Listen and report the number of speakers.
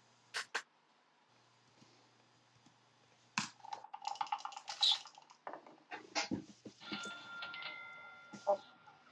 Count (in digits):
0